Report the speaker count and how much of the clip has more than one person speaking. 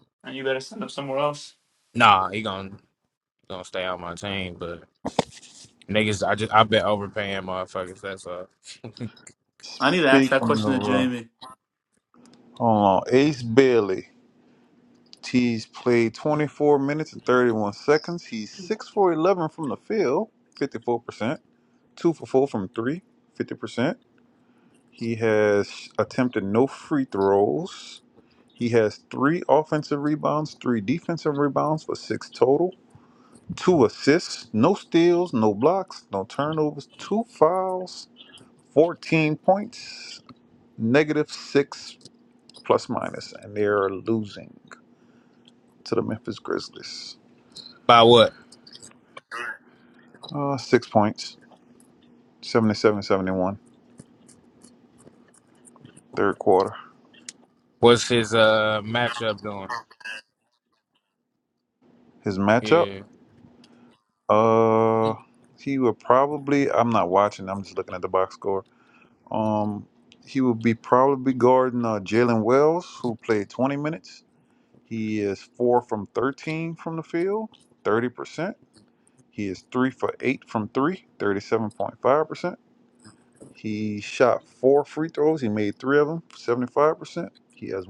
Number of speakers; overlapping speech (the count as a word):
three, about 1%